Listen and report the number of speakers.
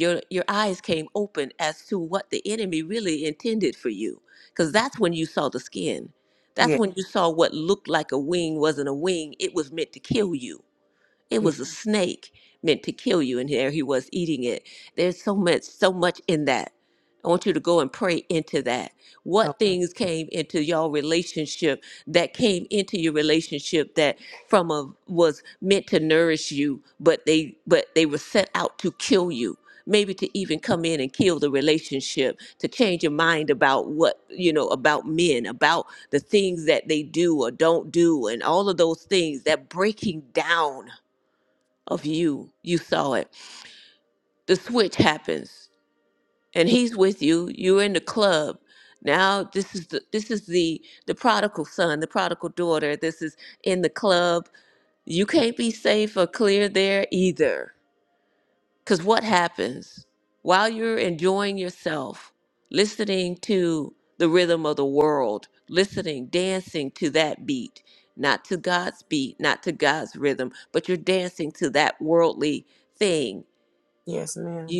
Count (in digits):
2